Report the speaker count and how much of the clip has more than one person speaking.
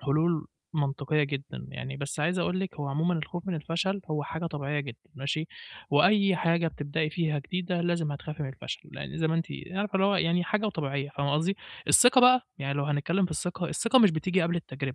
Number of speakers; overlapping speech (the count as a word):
one, no overlap